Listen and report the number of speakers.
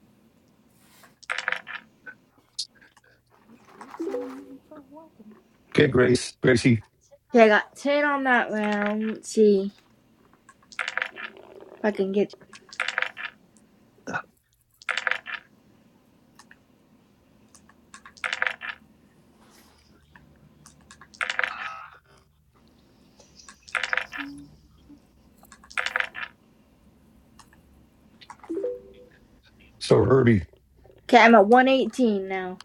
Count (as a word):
three